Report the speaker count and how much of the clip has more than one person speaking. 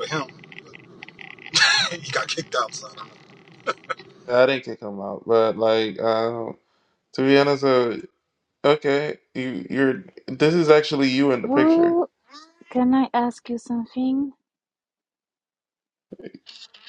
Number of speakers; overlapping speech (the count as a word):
three, about 3%